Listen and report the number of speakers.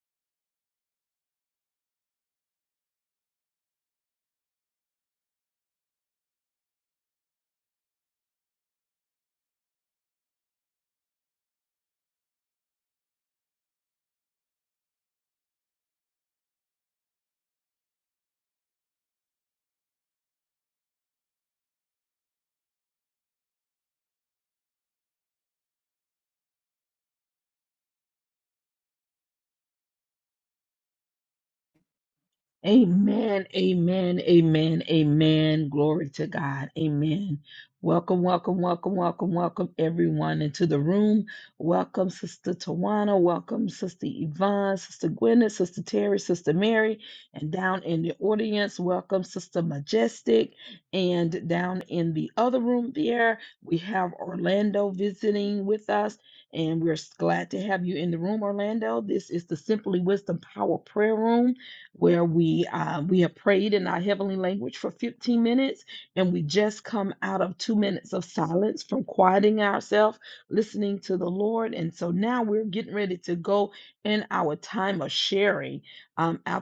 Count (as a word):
one